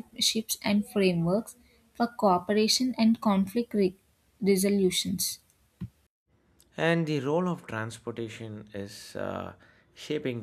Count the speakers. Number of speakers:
two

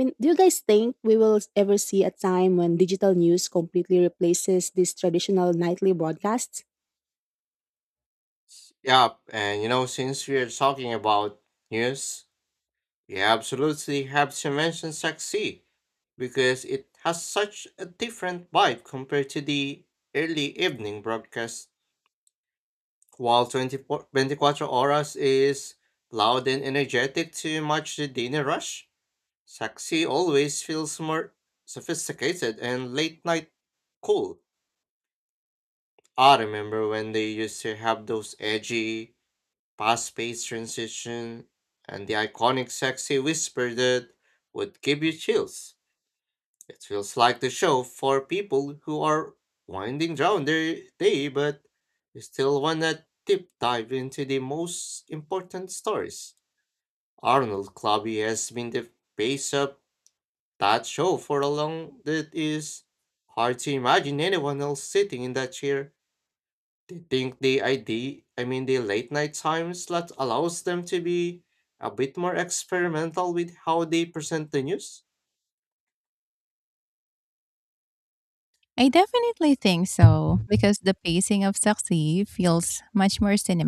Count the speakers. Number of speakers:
three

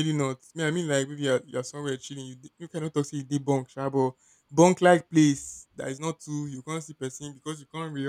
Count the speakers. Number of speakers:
one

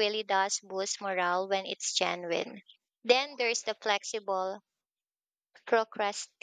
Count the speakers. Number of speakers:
one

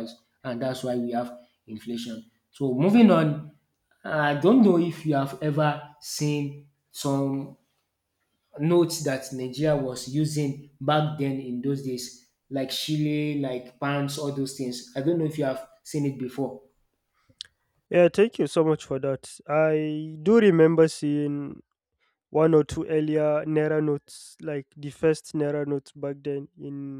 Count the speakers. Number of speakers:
two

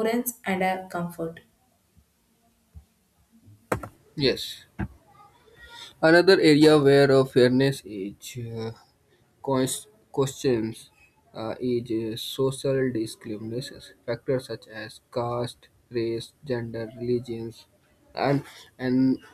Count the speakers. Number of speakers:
two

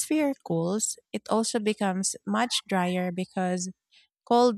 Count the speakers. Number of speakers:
one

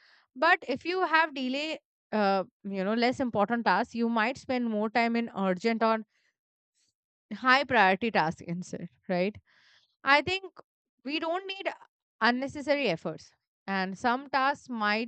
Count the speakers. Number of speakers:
one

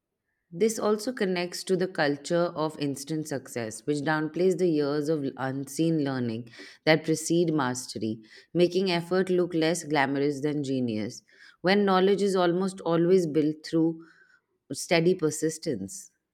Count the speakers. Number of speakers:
one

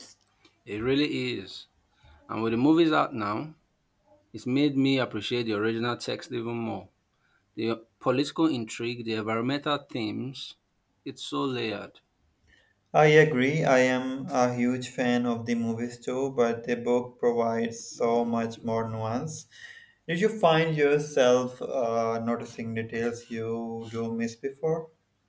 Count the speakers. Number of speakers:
two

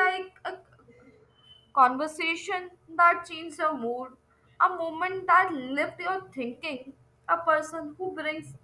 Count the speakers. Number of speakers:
one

